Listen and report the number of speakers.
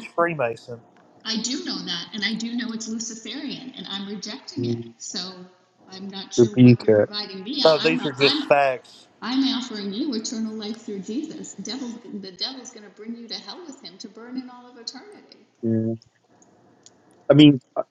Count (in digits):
3